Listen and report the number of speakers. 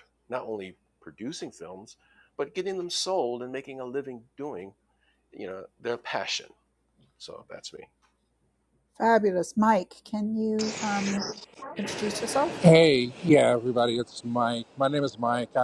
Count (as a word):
three